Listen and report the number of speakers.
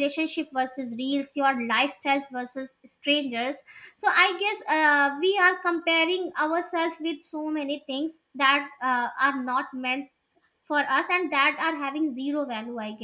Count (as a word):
one